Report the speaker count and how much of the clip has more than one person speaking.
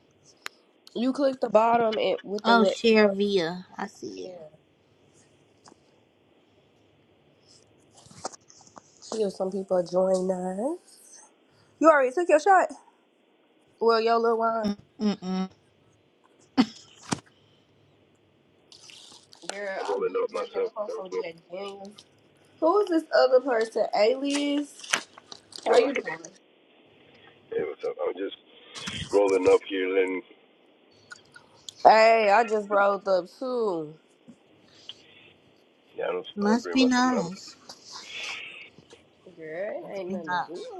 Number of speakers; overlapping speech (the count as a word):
three, about 10%